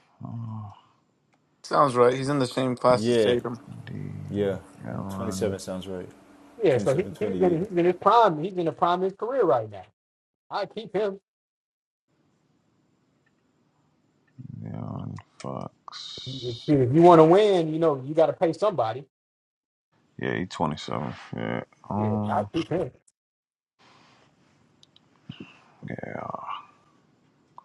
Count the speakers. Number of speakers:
4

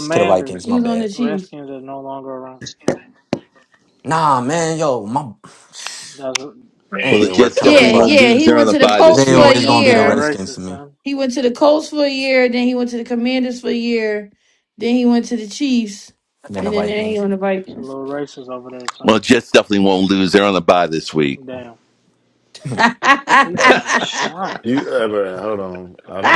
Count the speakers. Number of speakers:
5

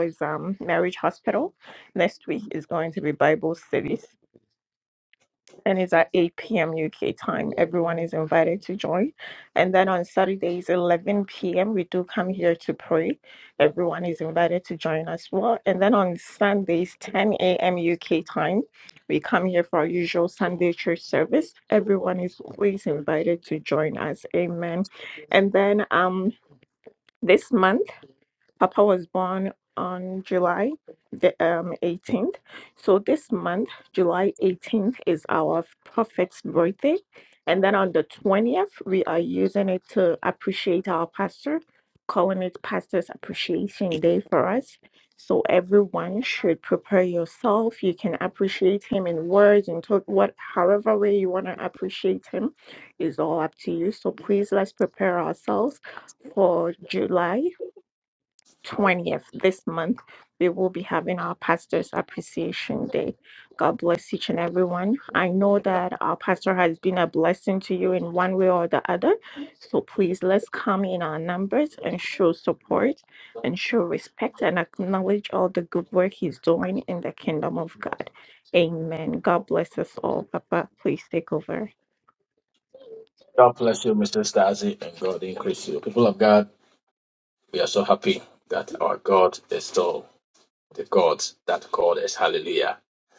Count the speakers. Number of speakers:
2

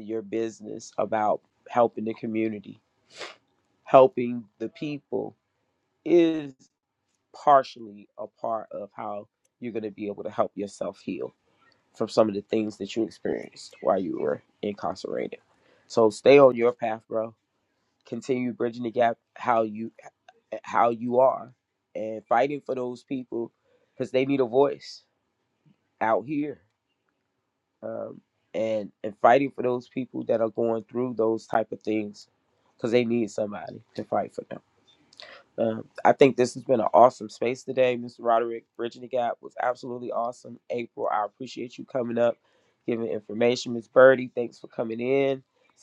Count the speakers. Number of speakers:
1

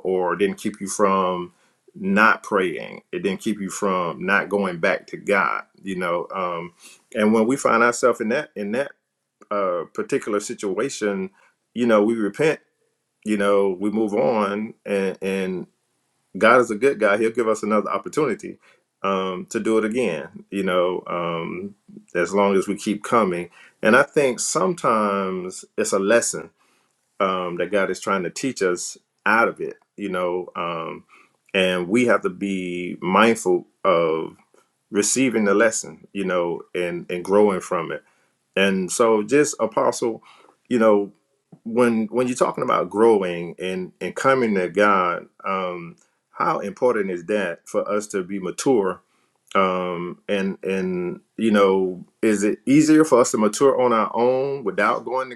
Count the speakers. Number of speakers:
1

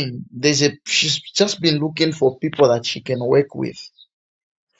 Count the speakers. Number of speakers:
1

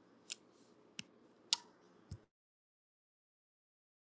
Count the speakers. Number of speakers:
0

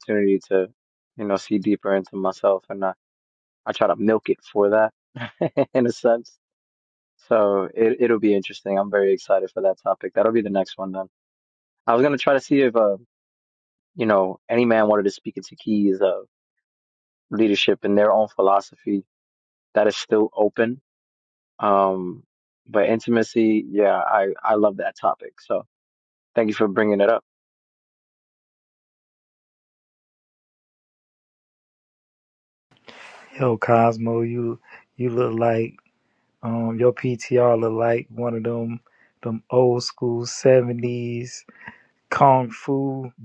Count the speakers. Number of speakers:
2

